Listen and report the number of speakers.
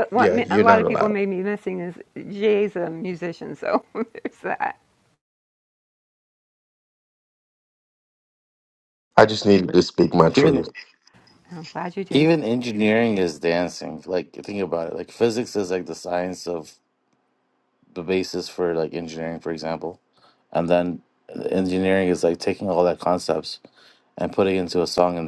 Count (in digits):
3